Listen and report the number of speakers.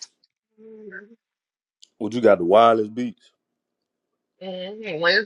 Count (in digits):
2